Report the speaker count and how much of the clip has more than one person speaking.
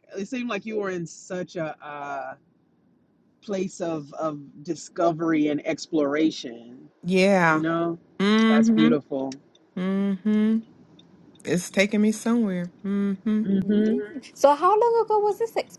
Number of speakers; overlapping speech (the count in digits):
3, about 6%